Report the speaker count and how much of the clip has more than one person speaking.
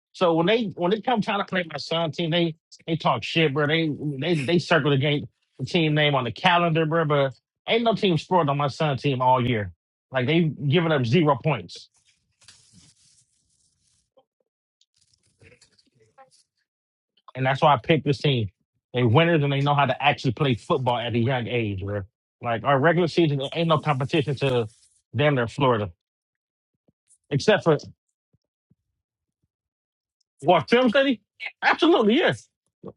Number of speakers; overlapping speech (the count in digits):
1, no overlap